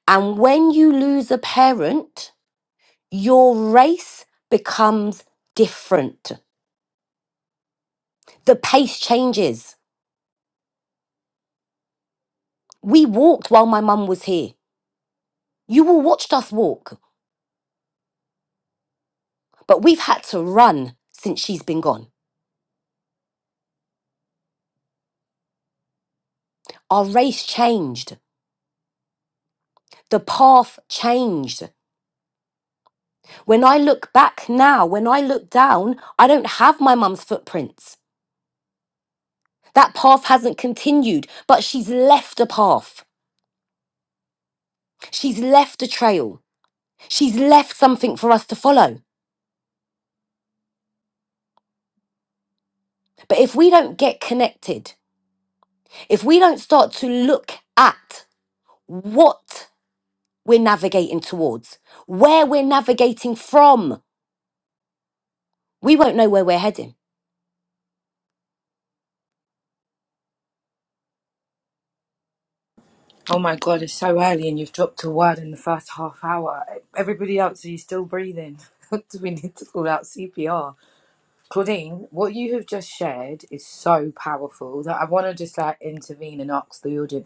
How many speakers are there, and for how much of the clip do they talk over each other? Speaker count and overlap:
2, no overlap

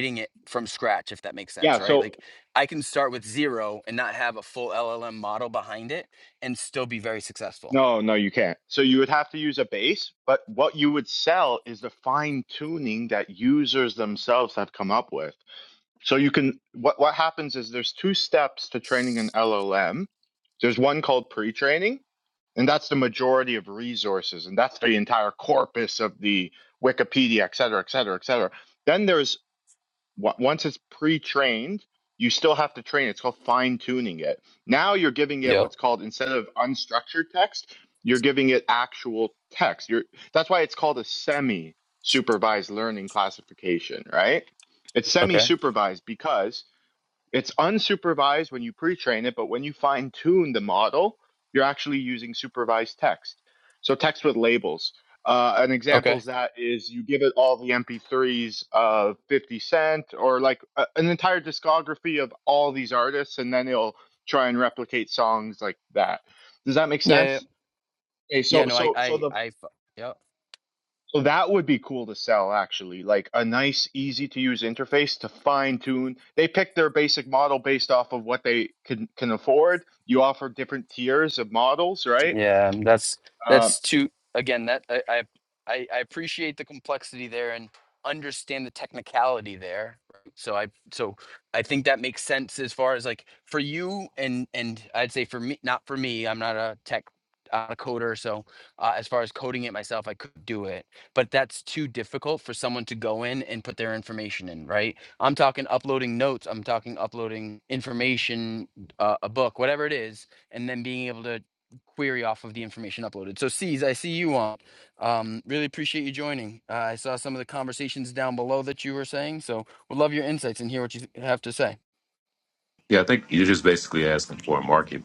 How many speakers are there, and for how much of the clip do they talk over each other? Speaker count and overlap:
3, about 2%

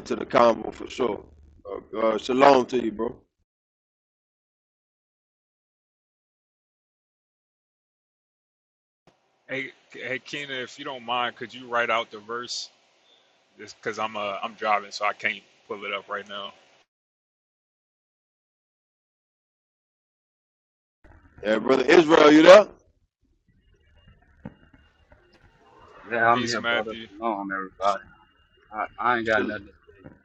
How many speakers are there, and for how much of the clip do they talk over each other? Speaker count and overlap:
3, about 3%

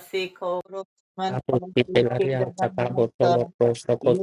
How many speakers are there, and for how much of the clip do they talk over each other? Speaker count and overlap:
2, about 26%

